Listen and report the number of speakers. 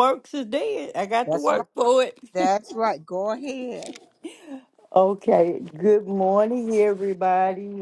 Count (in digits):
2